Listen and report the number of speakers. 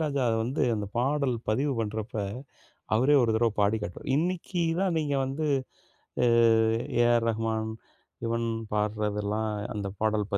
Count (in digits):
1